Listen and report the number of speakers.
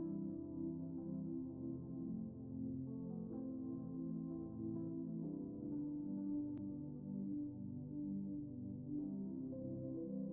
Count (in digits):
0